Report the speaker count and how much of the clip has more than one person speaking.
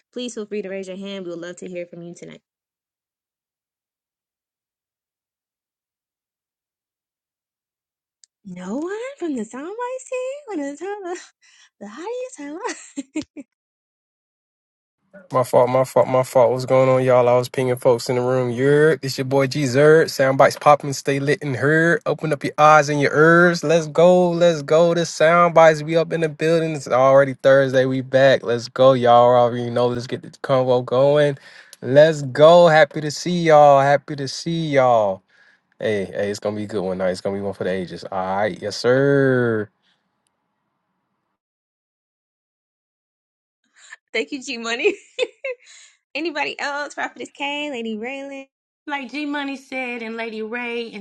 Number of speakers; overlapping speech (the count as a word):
three, no overlap